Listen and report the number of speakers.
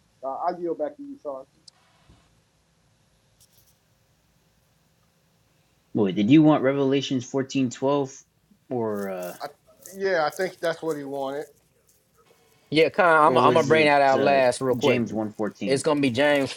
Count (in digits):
3